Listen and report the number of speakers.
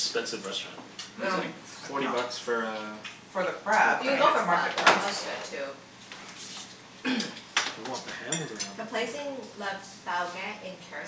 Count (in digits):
4